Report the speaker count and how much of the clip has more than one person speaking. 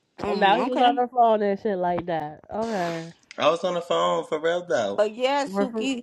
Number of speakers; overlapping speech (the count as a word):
three, about 12%